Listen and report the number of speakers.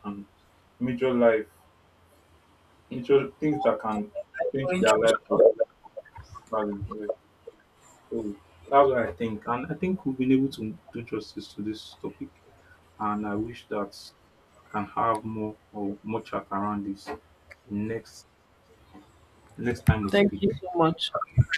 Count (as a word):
two